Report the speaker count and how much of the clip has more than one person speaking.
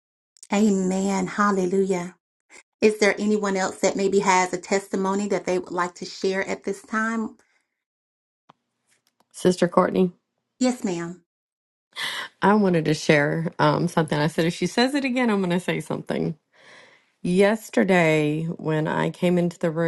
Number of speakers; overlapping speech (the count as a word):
two, no overlap